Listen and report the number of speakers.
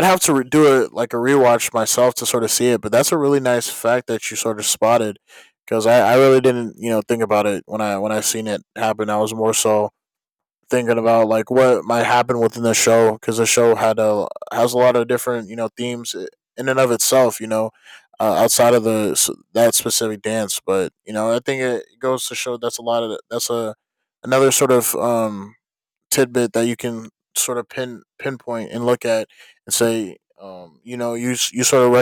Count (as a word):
one